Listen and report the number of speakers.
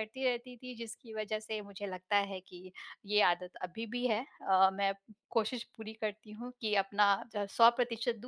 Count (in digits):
1